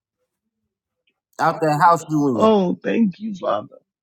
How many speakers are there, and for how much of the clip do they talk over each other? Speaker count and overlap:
two, about 3%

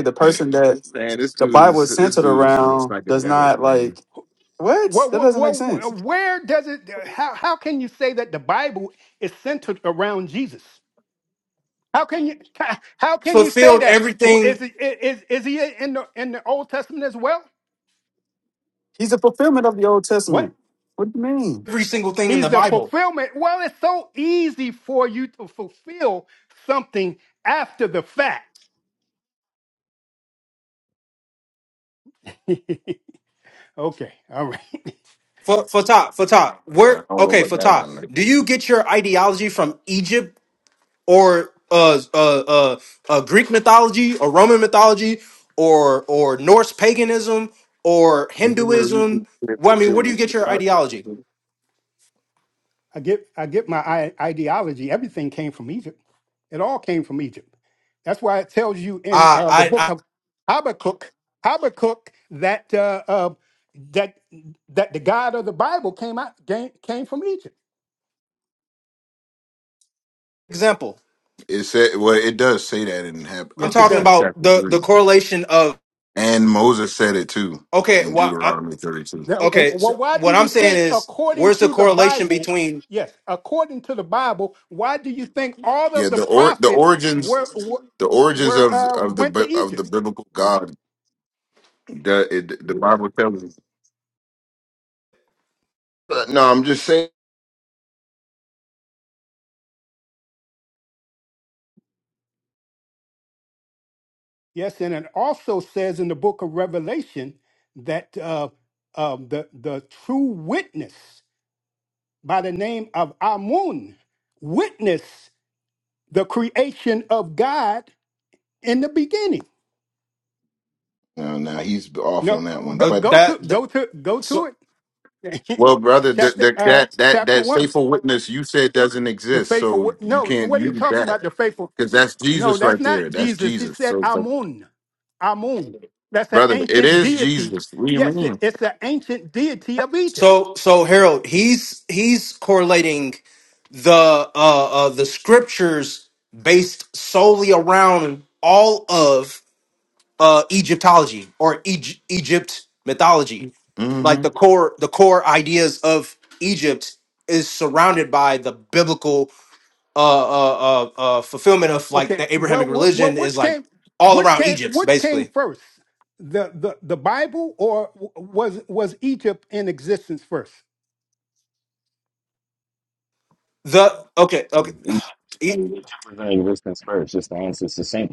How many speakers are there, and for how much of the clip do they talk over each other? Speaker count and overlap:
five, about 14%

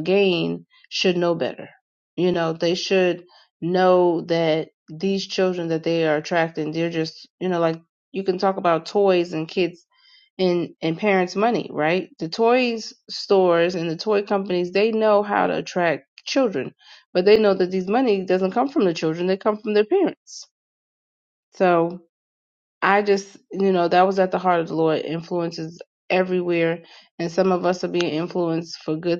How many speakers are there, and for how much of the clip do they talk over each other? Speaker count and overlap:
one, no overlap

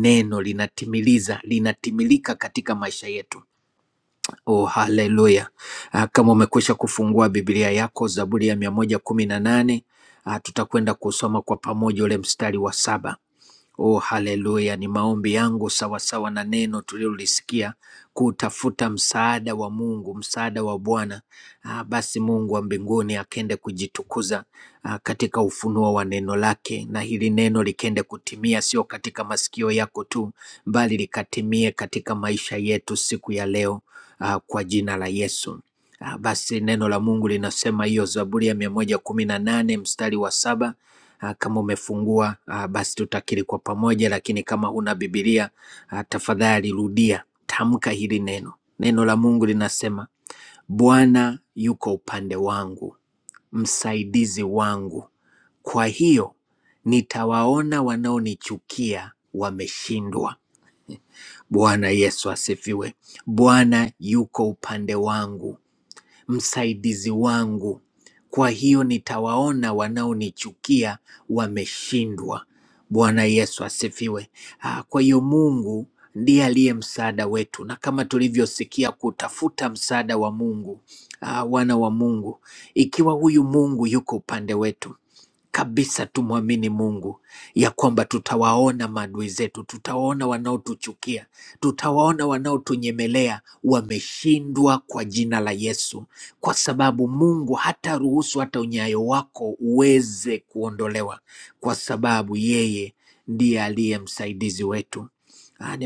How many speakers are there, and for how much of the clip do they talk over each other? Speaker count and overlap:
one, no overlap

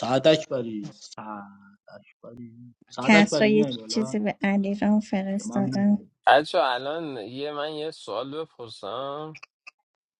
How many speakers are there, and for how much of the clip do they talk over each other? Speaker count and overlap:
three, about 15%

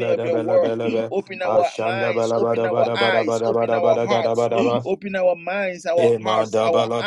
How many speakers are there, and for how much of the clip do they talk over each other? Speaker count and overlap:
two, about 67%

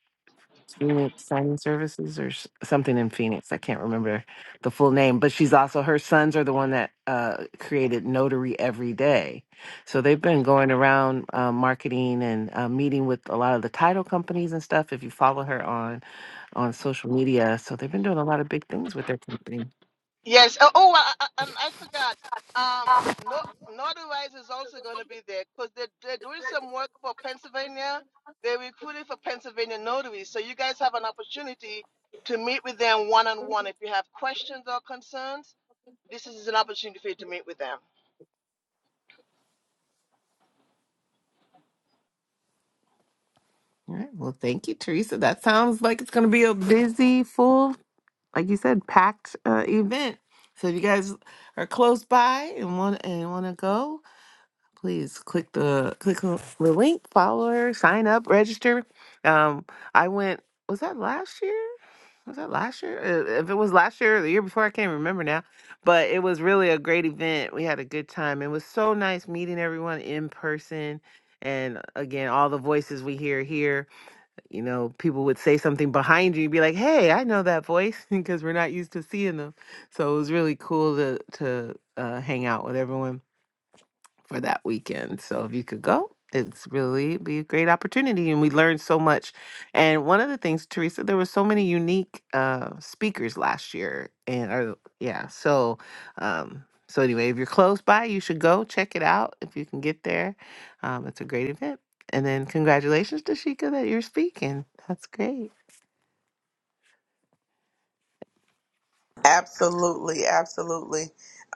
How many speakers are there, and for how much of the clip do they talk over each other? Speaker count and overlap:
three, no overlap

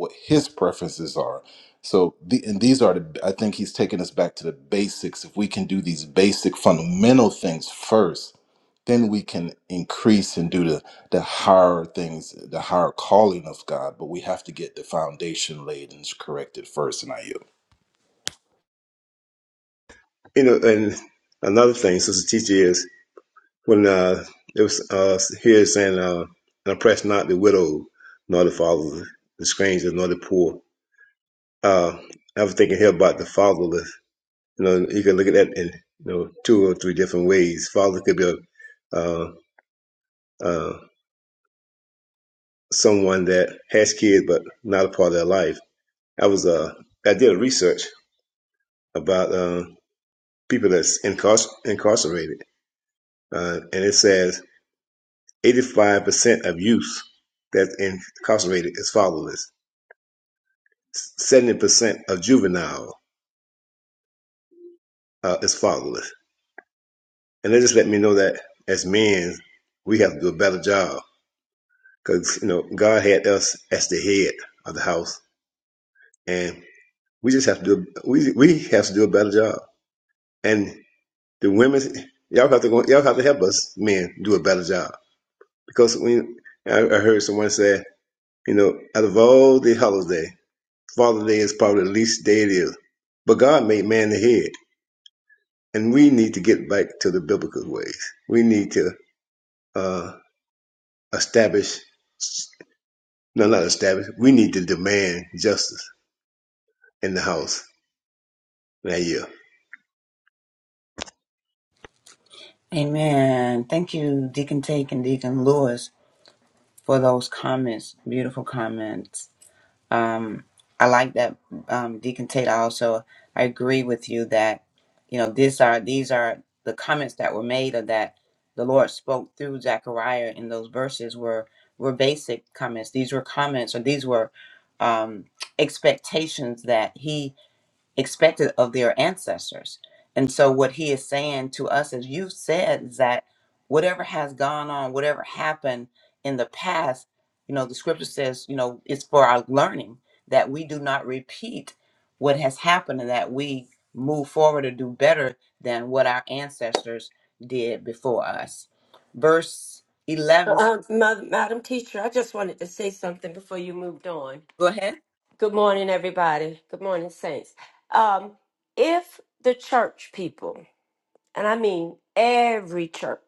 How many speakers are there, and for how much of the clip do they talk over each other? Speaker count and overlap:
four, under 1%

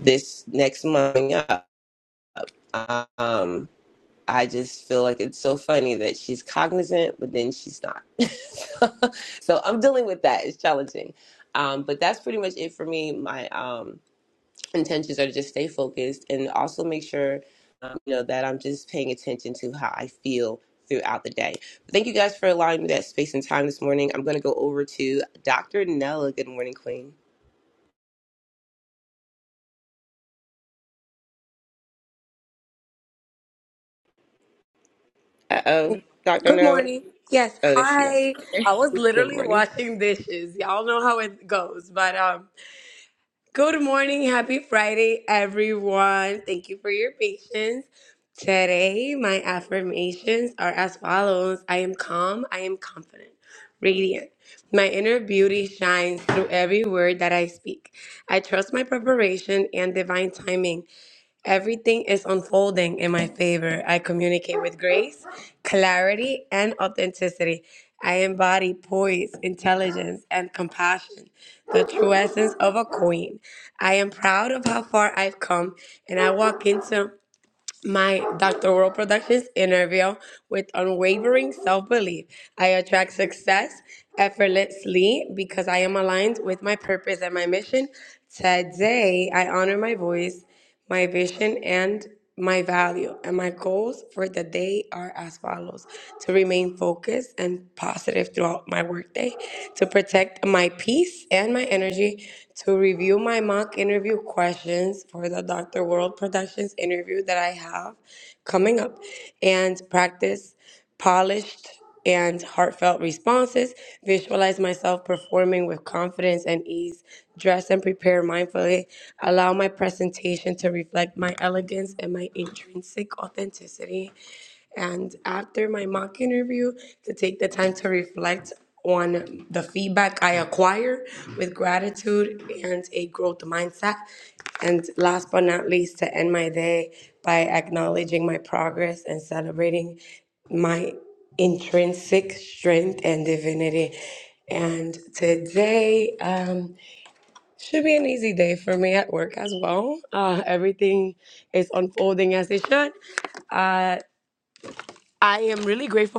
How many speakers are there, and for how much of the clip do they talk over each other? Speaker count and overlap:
two, about 1%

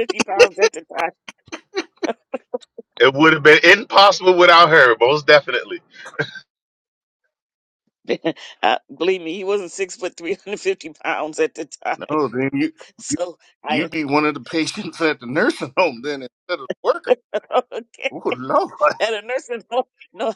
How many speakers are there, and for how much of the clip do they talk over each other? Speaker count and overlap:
three, about 1%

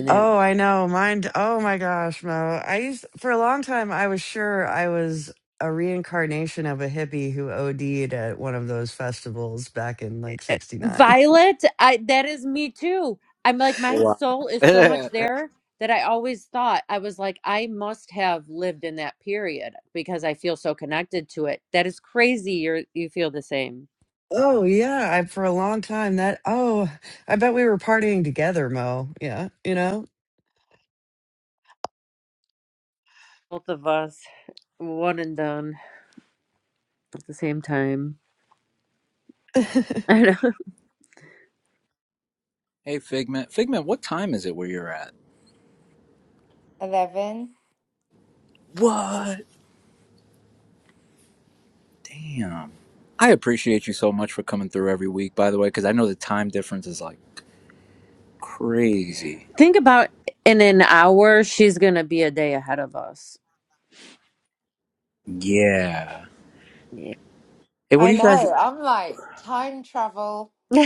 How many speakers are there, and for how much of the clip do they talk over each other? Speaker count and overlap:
four, about 3%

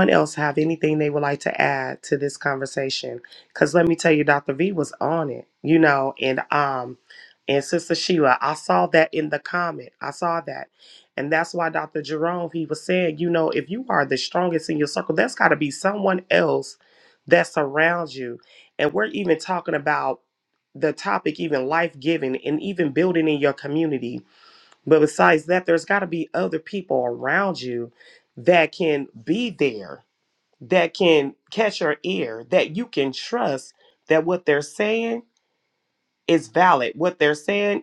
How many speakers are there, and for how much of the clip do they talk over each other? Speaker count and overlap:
one, no overlap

